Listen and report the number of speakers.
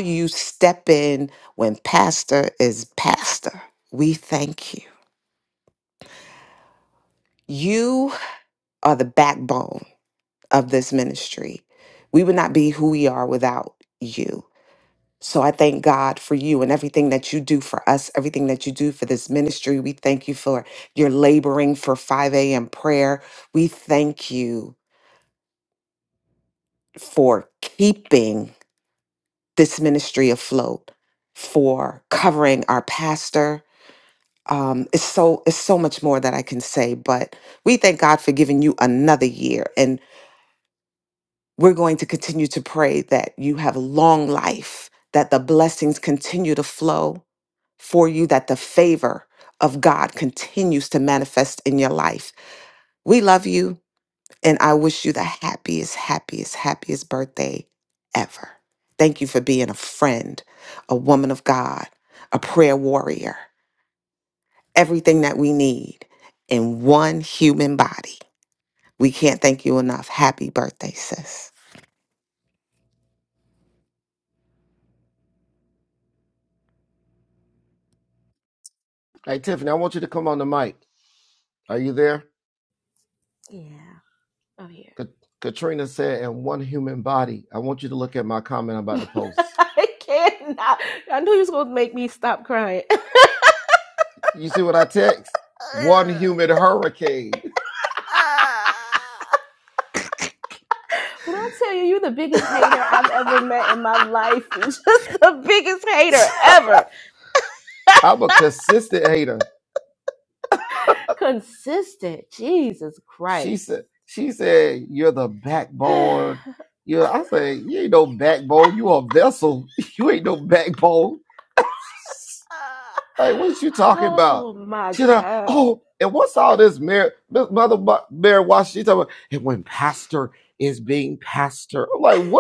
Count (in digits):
3